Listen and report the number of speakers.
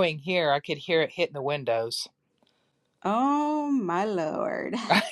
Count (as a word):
two